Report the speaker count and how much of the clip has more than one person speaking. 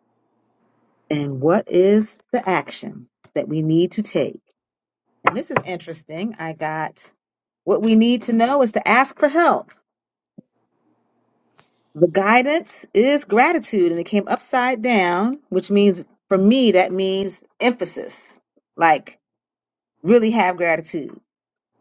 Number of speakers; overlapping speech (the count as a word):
one, no overlap